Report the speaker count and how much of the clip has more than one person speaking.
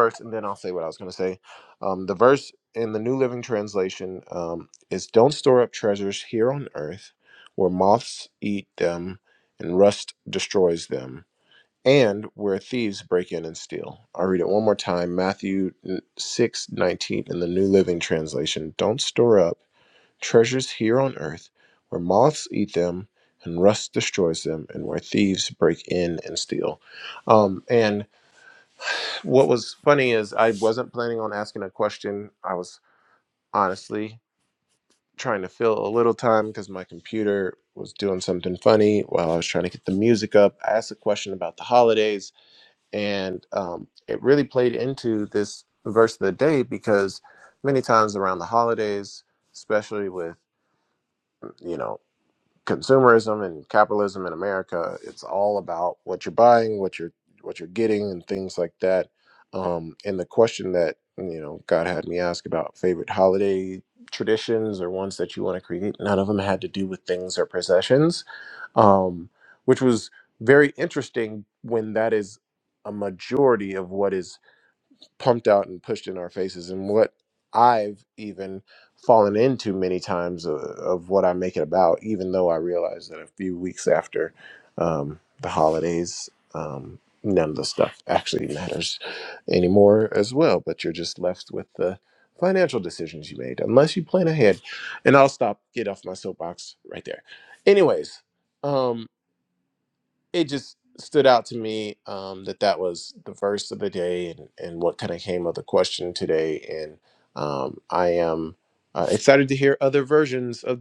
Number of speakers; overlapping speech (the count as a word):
one, no overlap